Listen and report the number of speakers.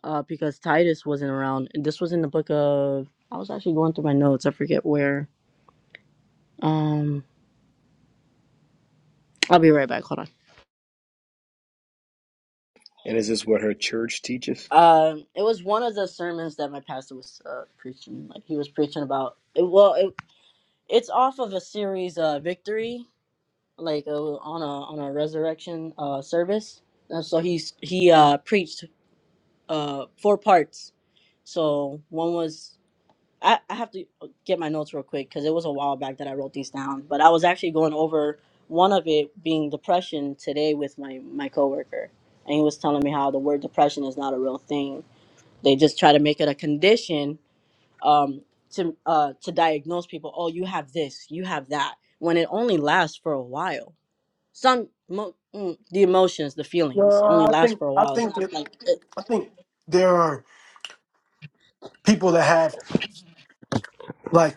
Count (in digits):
3